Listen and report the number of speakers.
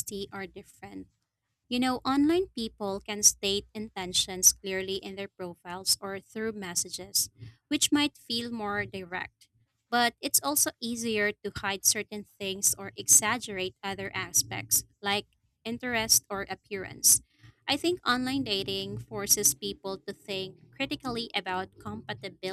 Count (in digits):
1